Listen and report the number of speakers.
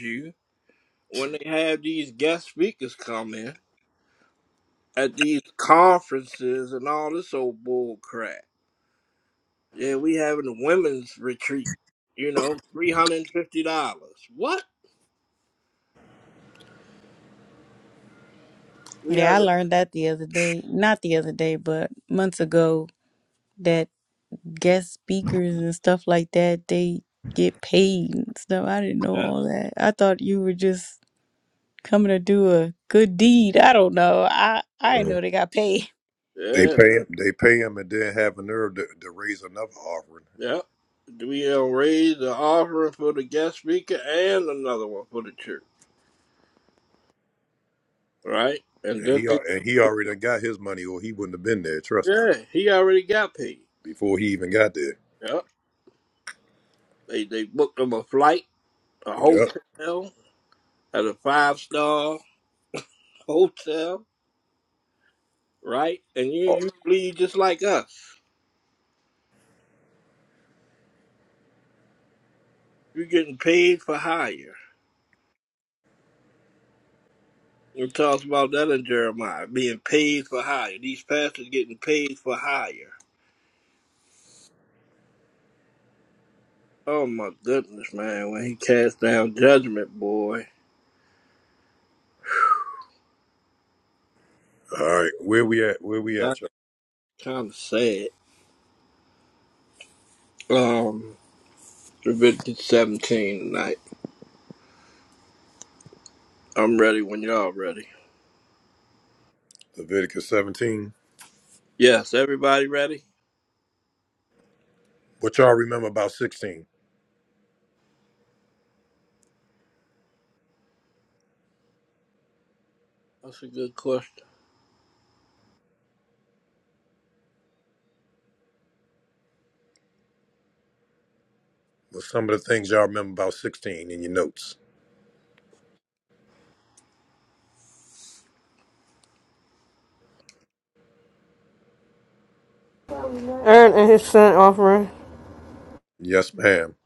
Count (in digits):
4